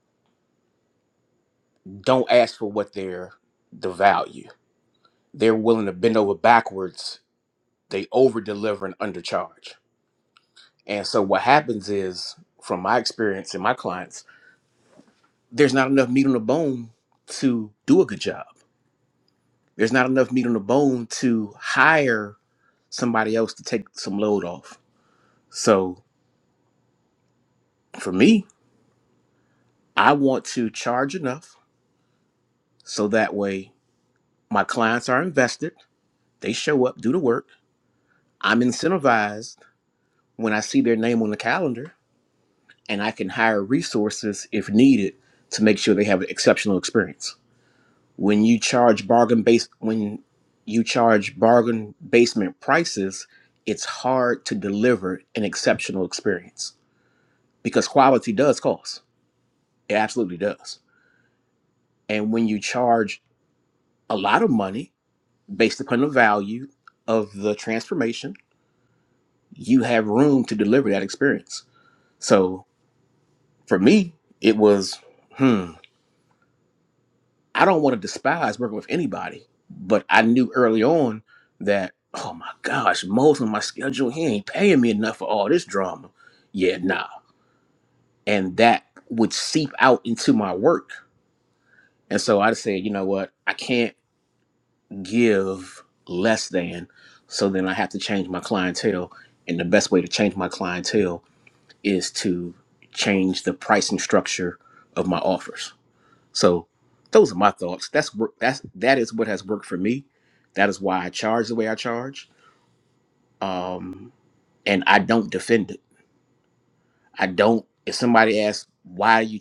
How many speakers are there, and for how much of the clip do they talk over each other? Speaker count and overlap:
one, no overlap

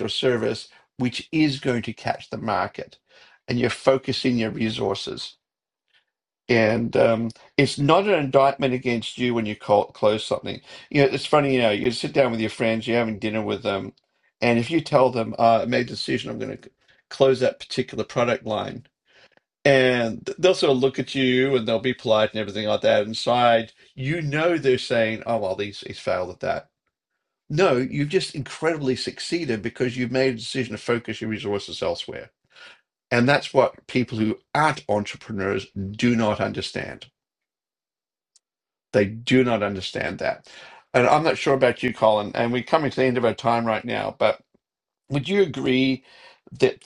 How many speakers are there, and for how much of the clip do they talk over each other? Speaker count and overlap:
one, no overlap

